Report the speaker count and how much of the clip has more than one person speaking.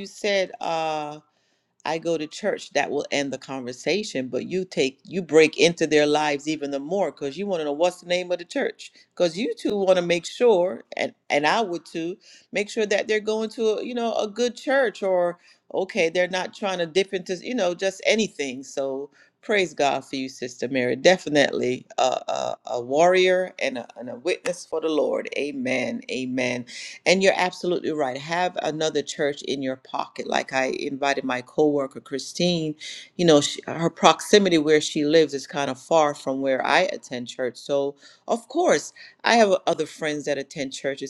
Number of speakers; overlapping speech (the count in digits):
1, no overlap